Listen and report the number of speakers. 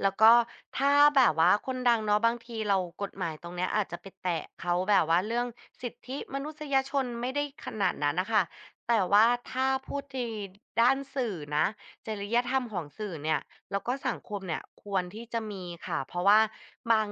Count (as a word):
one